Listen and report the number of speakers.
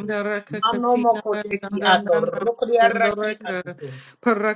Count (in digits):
2